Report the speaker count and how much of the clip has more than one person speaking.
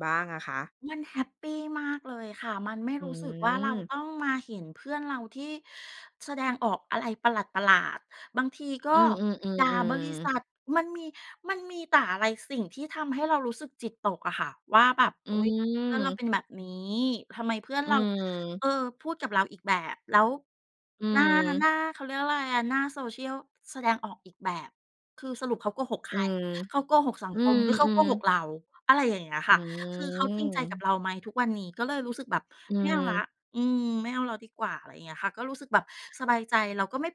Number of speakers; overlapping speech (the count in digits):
2, about 9%